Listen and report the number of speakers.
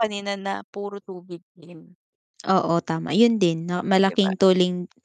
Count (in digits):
2